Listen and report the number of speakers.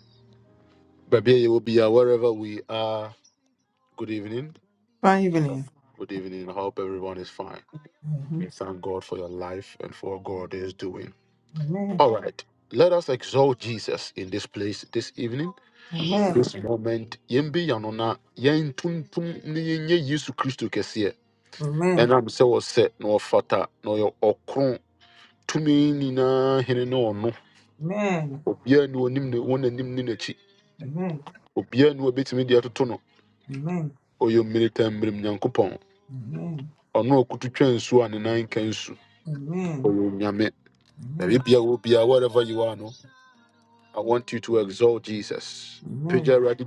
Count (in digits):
2